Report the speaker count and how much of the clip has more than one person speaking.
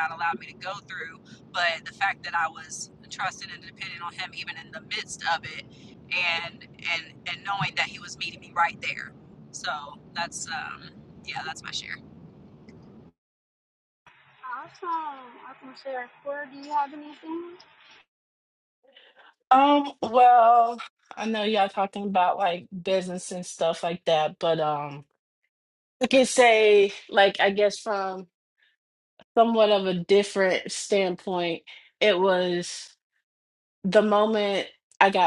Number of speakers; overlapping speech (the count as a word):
three, no overlap